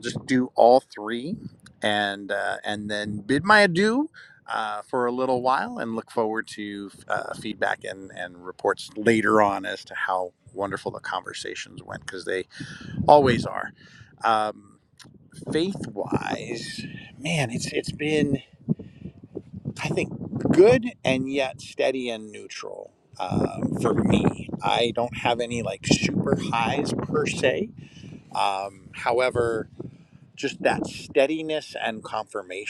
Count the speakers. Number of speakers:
1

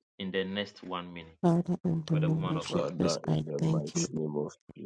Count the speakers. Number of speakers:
3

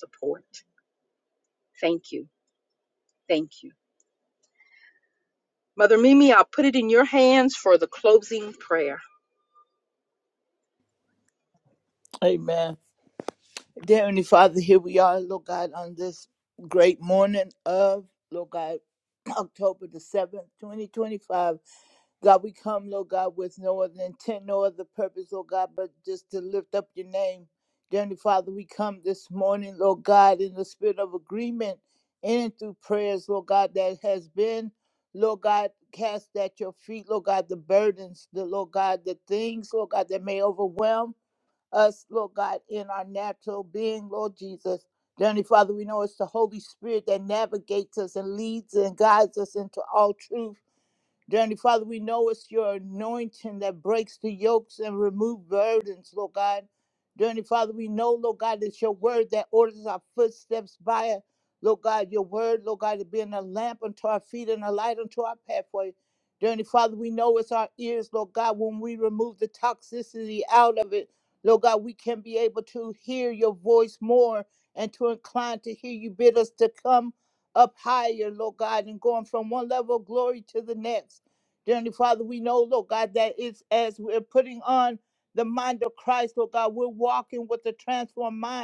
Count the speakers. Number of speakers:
2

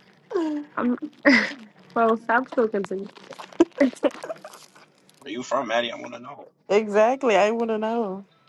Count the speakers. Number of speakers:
3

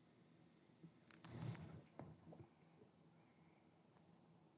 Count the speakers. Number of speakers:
0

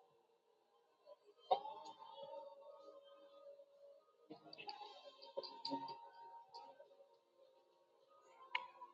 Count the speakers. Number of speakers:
0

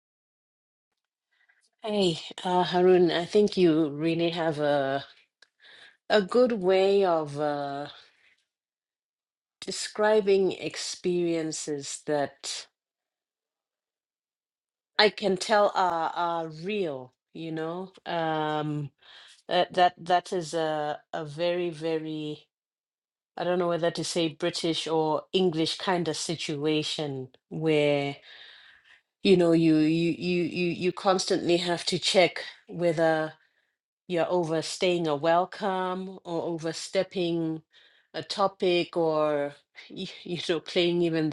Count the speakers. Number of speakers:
1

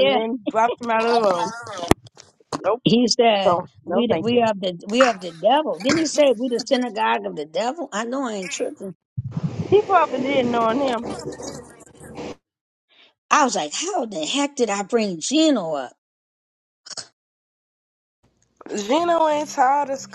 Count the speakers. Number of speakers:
3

